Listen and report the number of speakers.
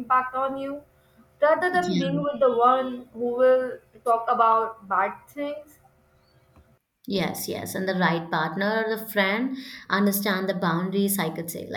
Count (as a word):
two